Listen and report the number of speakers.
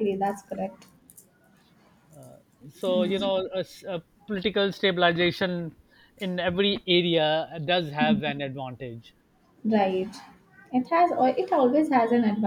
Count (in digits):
2